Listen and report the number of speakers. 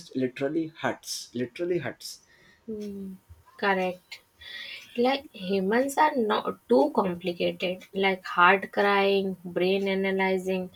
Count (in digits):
2